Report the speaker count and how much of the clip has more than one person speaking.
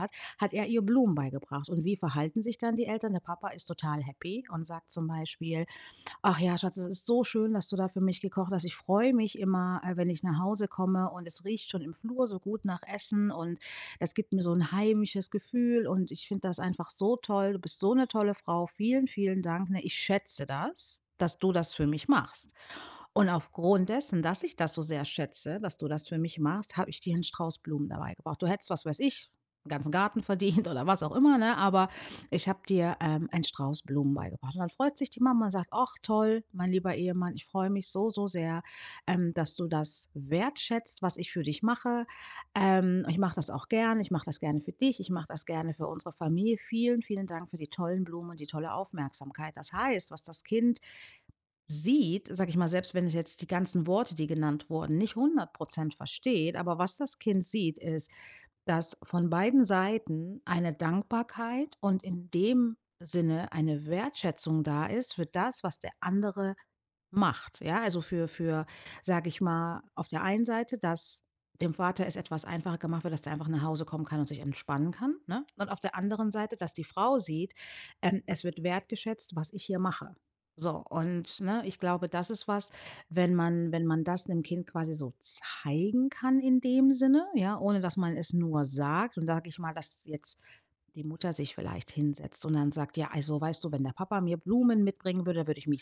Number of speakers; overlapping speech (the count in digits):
1, no overlap